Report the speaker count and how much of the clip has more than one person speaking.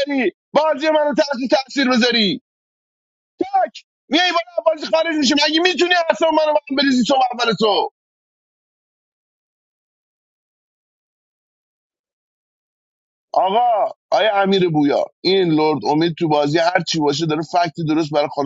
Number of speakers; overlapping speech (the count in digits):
1, no overlap